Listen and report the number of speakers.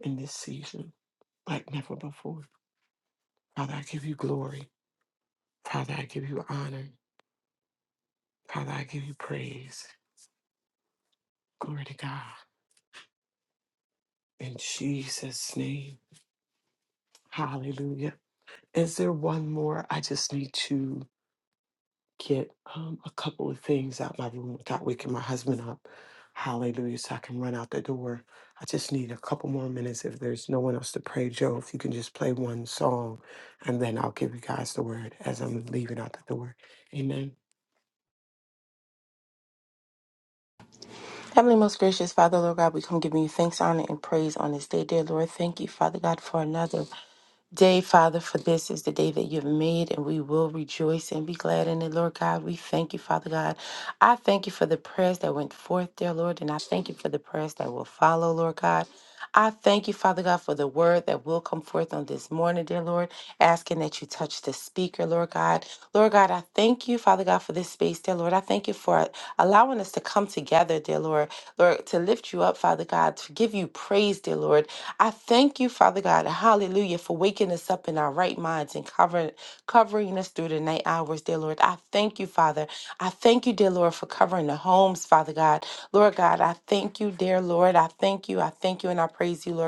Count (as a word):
two